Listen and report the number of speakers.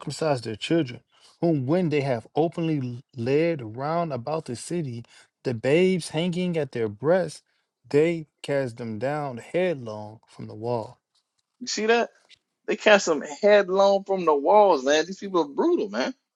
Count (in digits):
2